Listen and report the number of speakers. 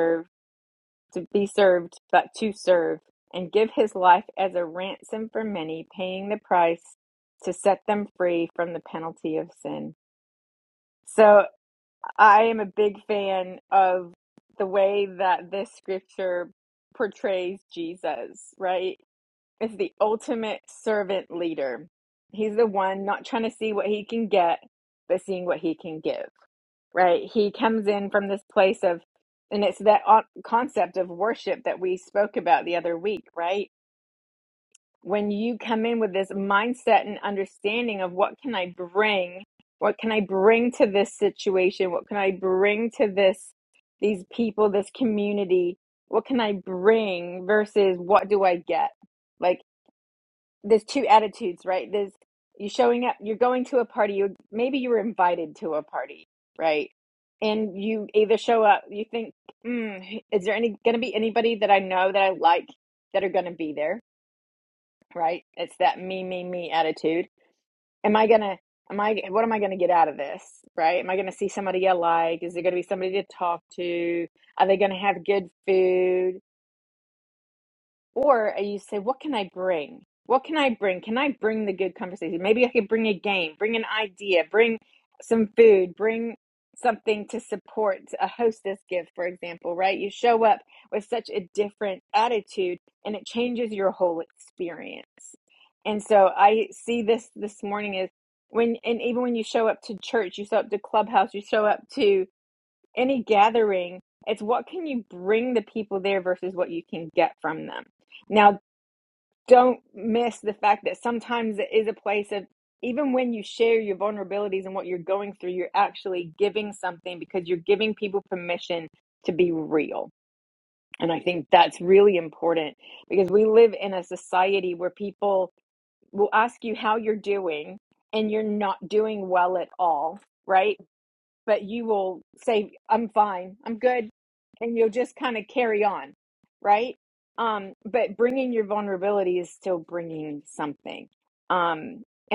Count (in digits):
1